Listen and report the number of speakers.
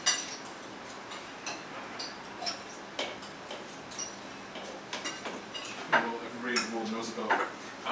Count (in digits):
1